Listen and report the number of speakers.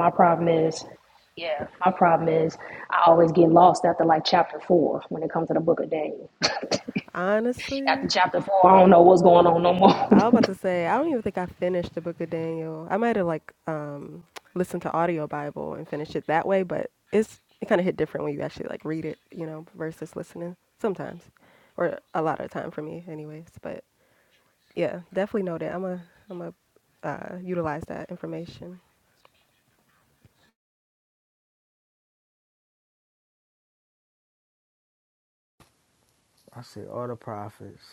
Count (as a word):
three